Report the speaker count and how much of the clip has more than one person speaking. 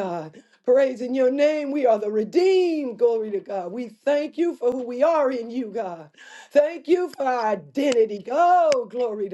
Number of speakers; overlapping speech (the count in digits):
1, no overlap